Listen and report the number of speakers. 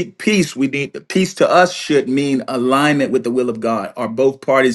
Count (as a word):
one